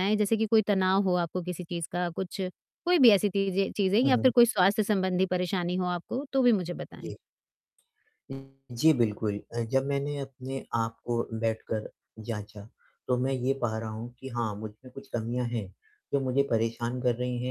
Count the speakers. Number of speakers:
two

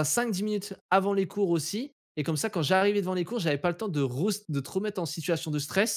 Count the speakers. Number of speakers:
one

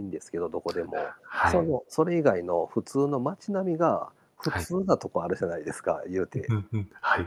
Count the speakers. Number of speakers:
two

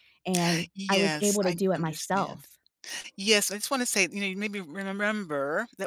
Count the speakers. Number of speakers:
two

